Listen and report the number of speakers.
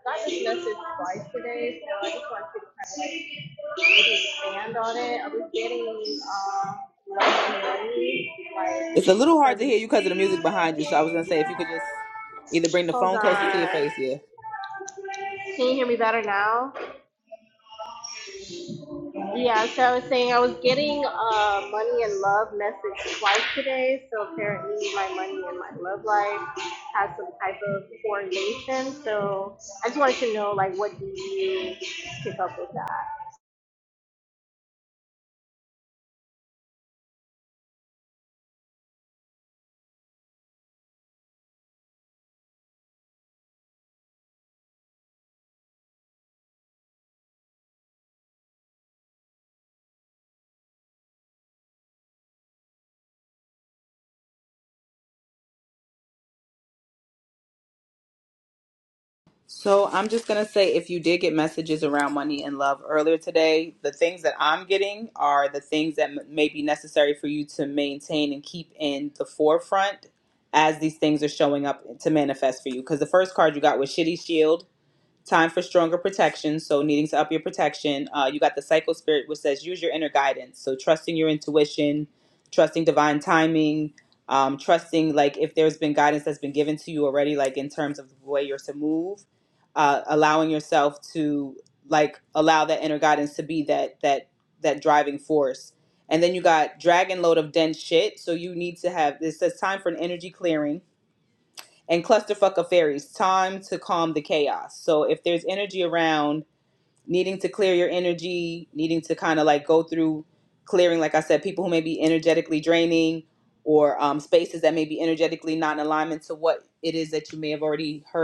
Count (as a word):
two